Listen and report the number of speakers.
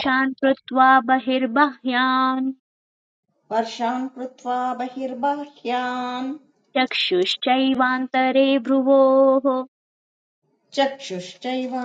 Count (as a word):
two